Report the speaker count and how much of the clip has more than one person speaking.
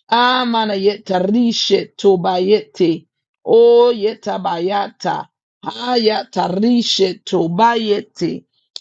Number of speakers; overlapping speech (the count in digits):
1, no overlap